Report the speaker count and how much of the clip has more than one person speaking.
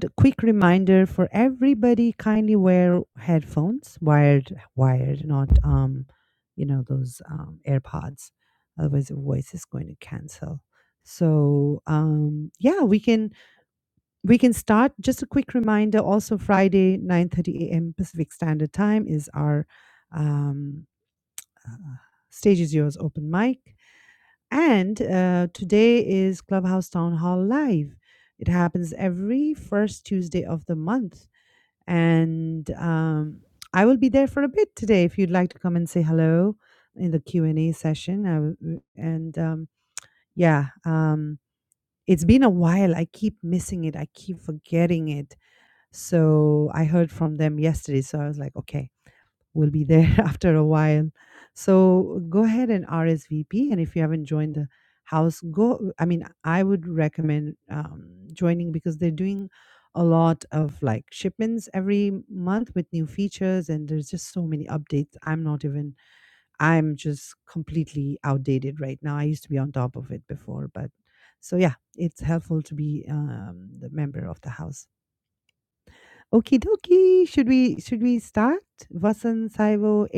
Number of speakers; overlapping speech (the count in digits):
1, no overlap